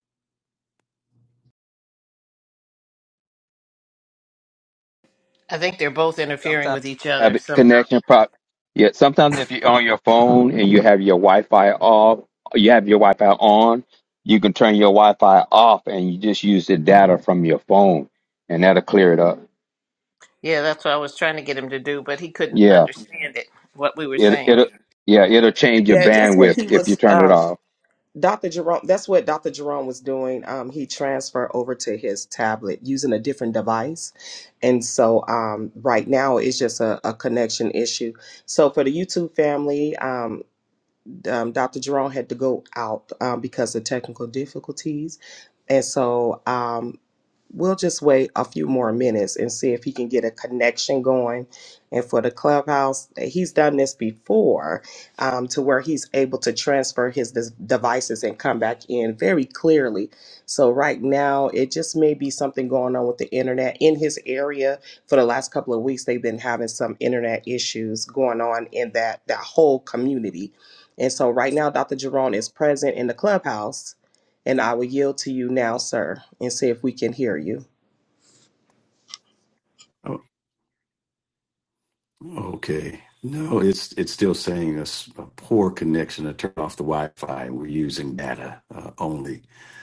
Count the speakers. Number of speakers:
4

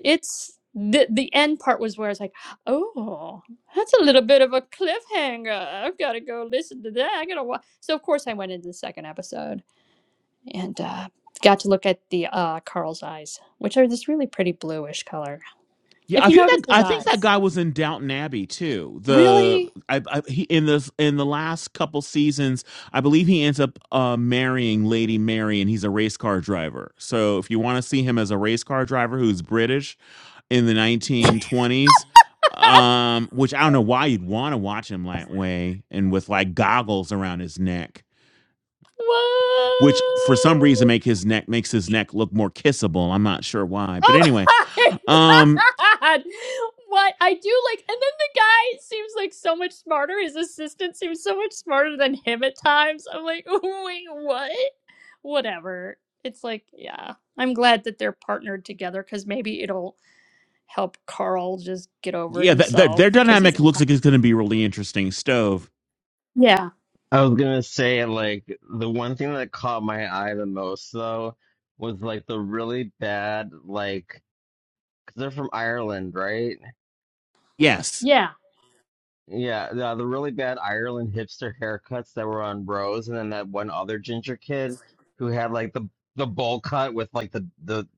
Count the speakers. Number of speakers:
3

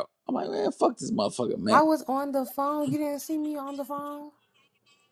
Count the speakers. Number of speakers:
2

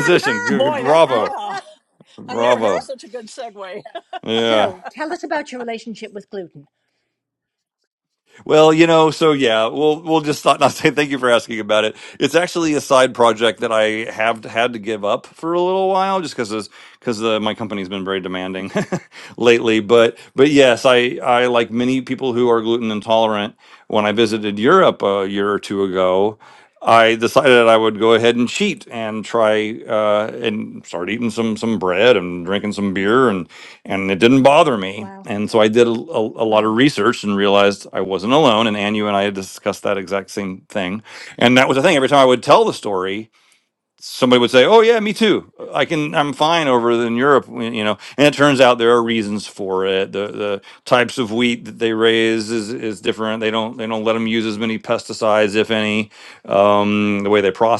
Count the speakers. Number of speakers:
3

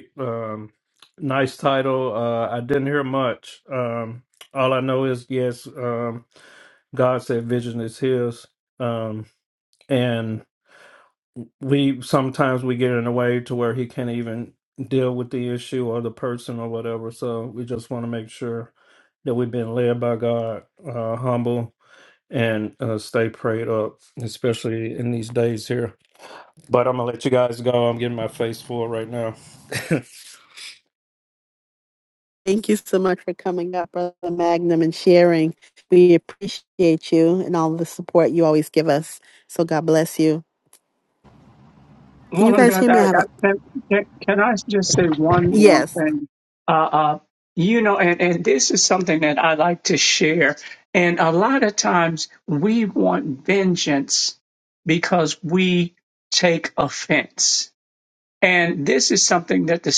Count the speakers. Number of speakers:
3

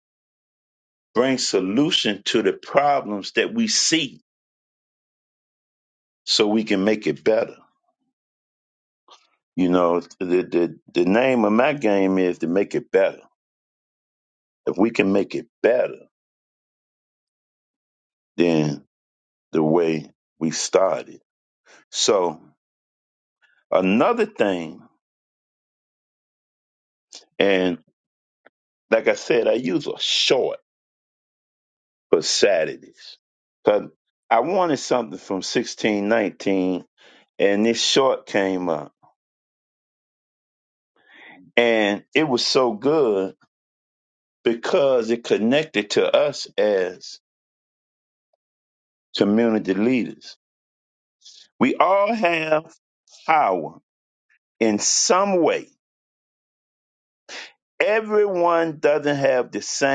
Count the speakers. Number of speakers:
1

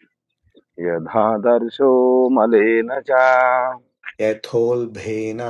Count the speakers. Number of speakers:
2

